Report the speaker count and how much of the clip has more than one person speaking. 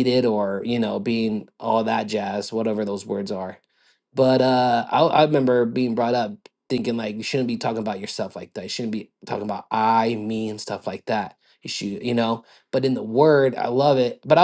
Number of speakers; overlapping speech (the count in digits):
1, no overlap